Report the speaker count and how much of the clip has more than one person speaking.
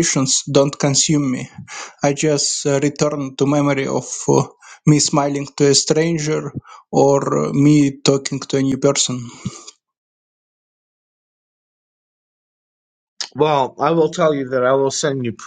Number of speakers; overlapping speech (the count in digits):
2, no overlap